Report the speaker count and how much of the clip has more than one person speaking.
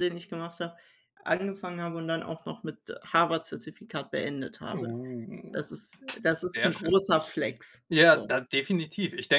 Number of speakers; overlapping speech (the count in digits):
2, about 9%